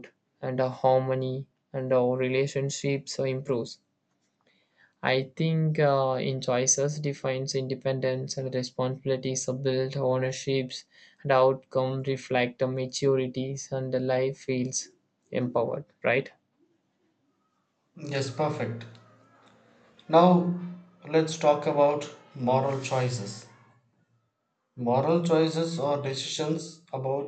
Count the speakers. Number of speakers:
2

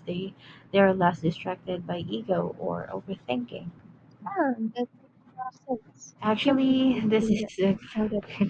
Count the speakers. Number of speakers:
2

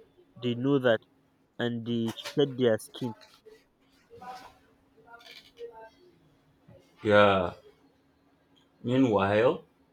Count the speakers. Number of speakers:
2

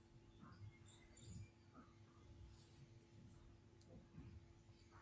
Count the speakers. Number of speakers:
0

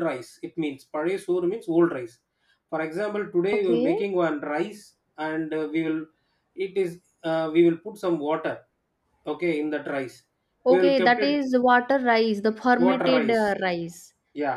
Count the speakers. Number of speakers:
2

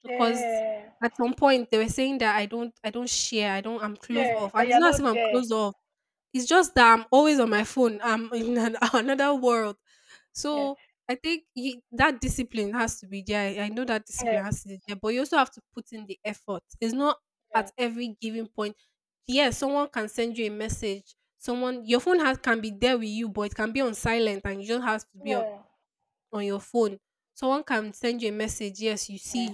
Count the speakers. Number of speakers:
2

